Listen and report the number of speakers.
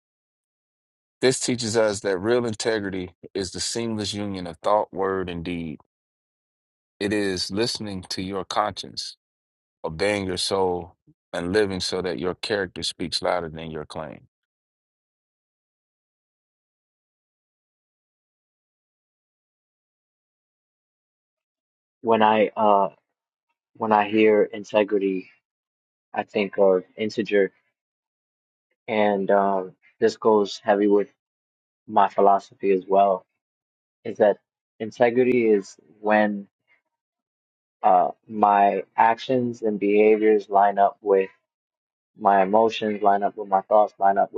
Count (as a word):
two